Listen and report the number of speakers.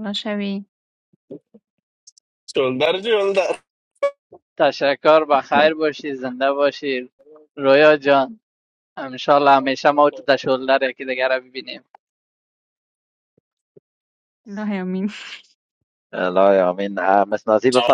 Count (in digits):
4